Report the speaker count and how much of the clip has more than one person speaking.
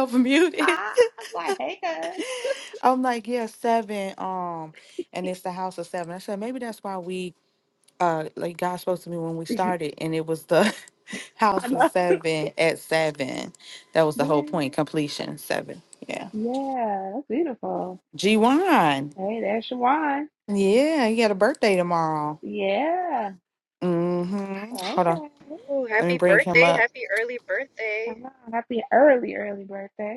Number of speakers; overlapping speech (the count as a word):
three, about 8%